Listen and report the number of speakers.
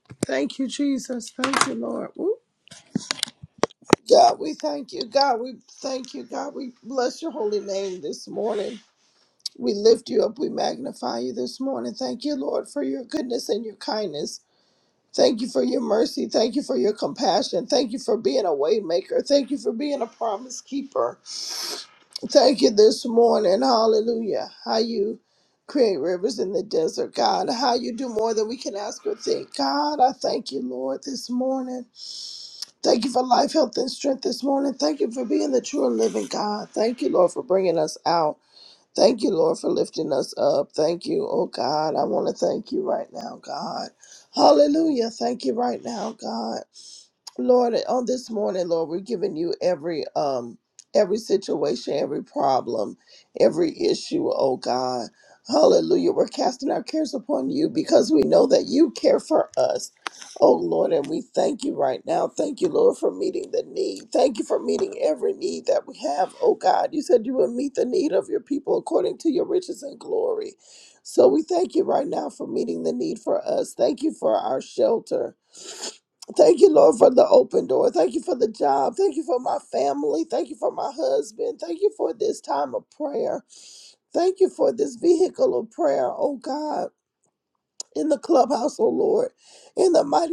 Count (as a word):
one